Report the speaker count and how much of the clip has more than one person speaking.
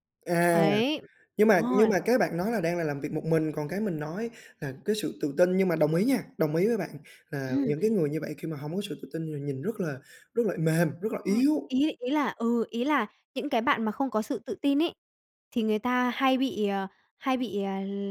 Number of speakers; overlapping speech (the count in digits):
2, about 3%